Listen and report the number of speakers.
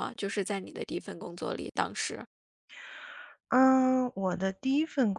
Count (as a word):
two